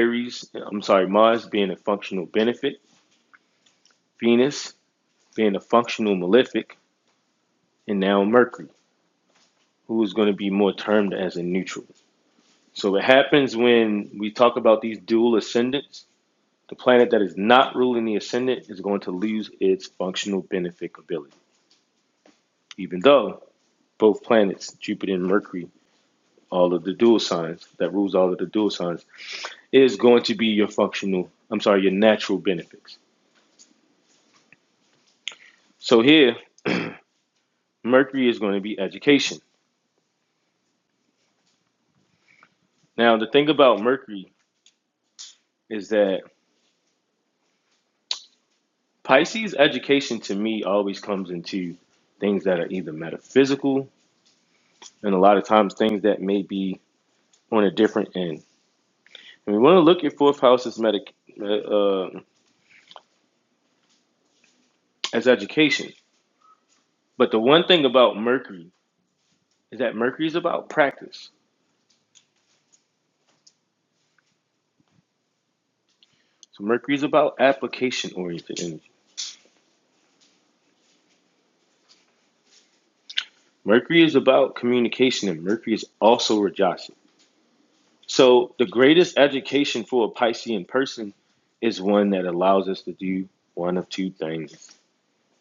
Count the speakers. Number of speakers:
one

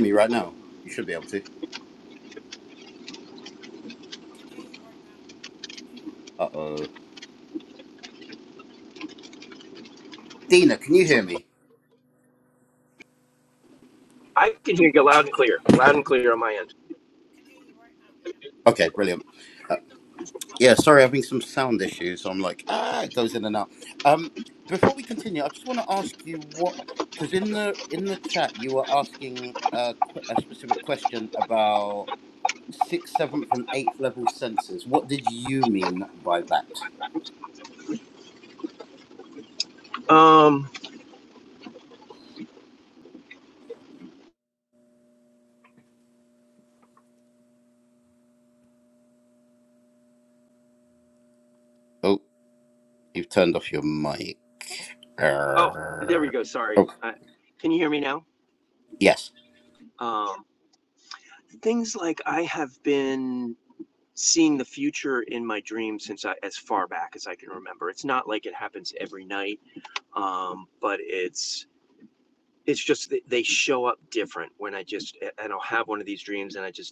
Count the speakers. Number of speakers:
three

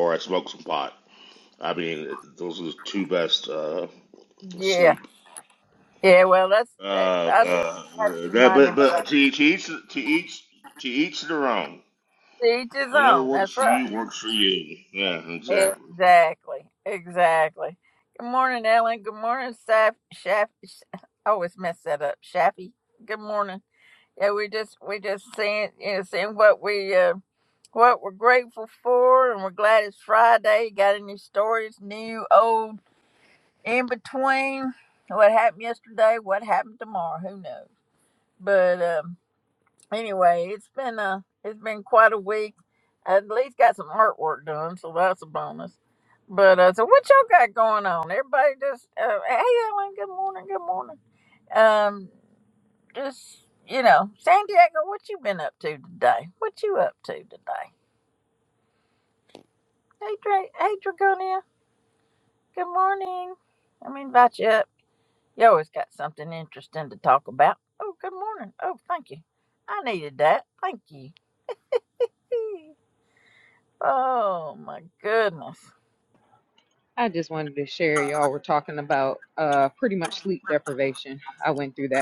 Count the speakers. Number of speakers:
three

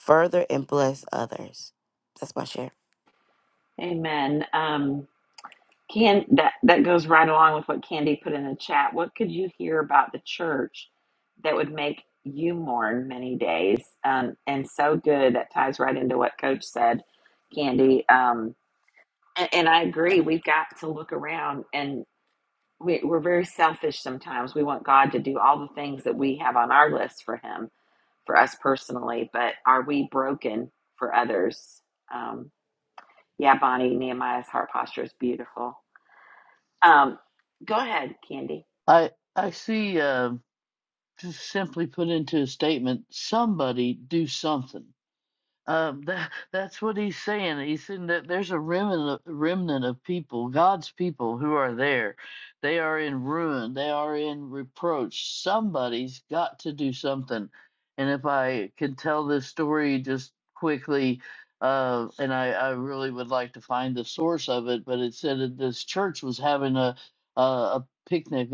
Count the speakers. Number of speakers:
three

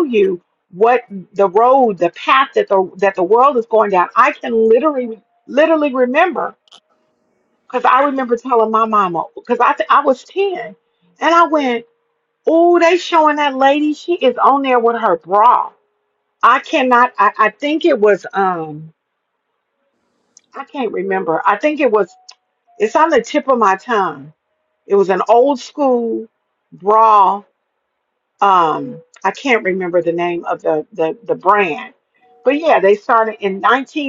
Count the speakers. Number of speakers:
one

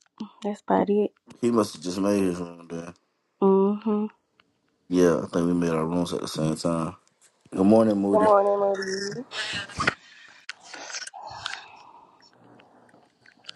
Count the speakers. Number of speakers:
three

